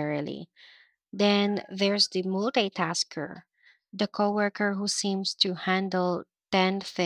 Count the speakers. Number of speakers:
one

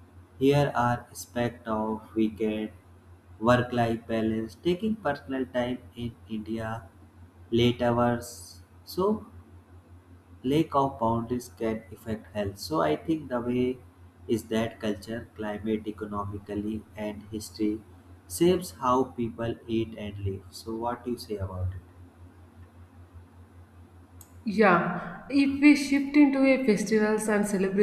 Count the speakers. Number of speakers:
two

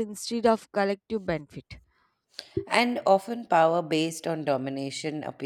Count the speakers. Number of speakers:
two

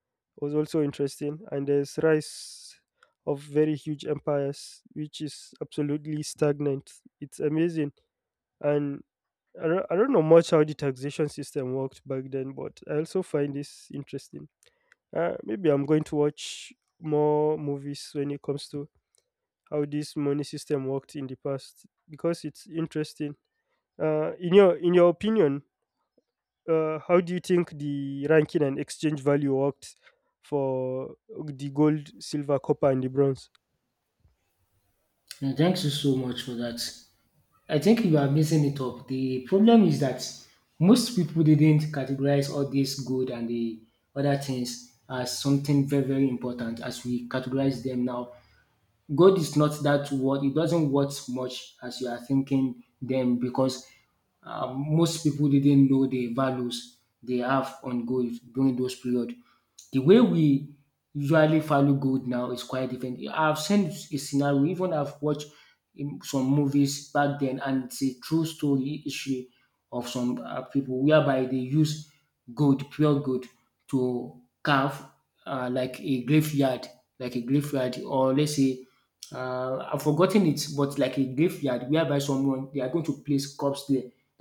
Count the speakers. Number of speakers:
two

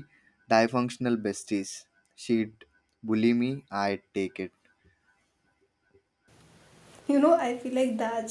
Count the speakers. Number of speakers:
two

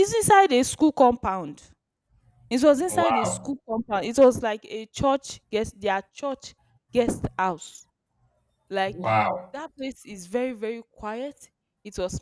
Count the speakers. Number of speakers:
two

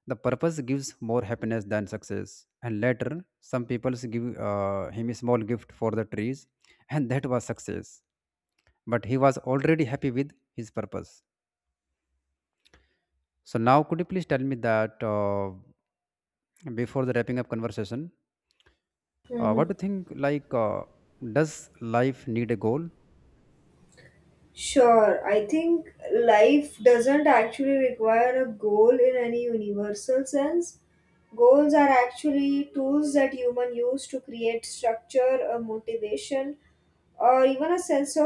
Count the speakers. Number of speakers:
two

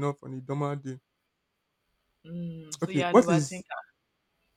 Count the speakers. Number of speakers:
two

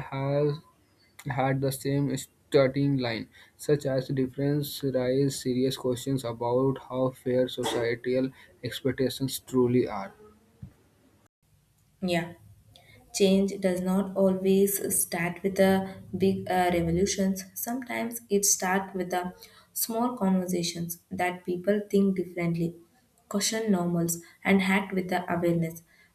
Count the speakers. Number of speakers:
two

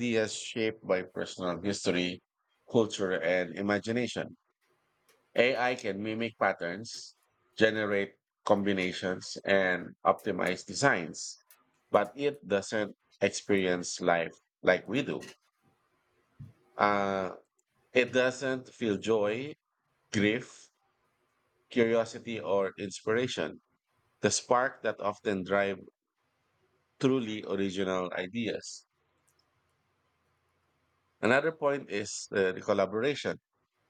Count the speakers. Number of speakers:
one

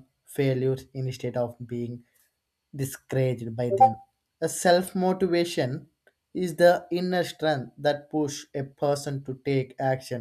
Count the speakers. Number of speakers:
one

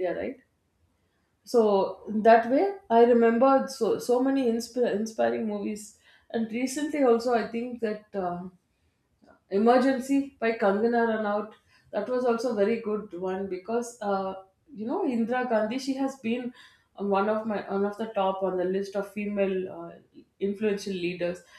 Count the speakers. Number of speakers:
one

